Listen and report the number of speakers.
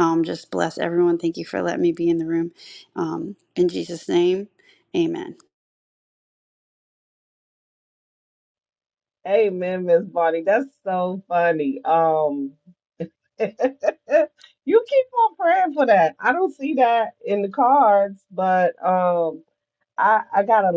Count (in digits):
2